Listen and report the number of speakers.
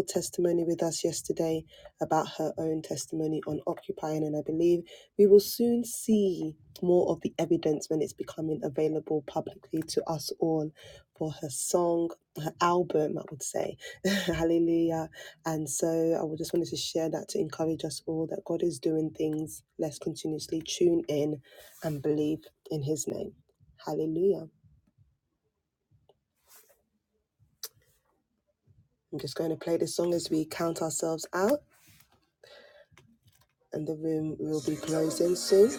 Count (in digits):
1